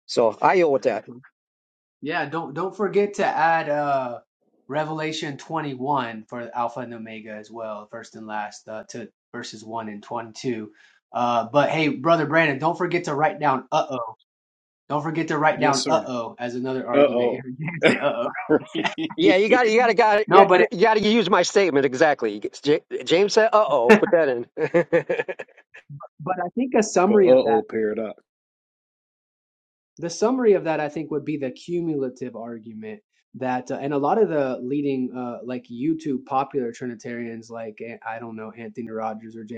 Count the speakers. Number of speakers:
three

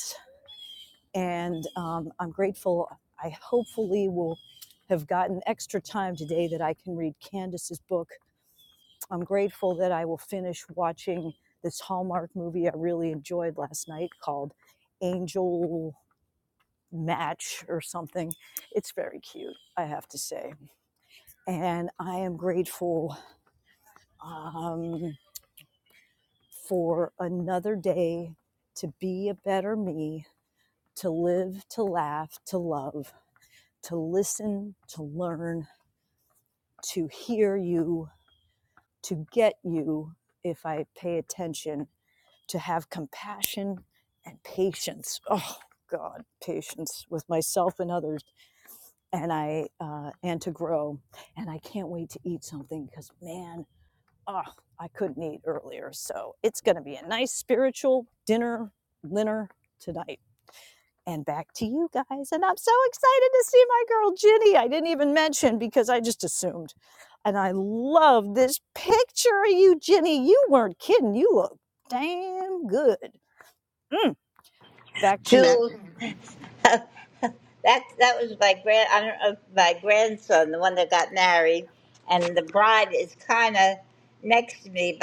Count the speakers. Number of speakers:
two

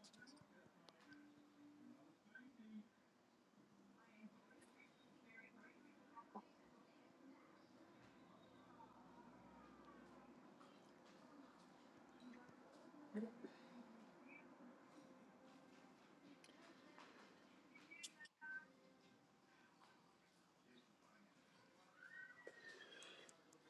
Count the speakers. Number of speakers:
zero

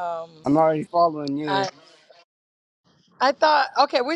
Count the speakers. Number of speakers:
two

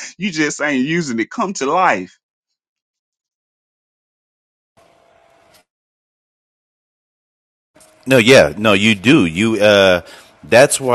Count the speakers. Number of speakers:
two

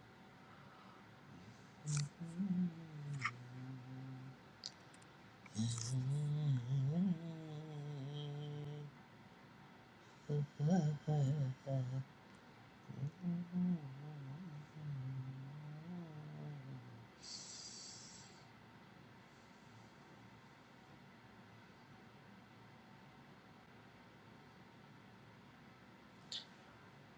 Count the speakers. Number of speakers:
zero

